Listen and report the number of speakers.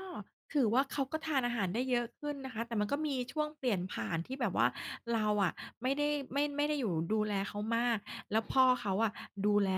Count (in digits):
1